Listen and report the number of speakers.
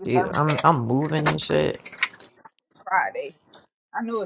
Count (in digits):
2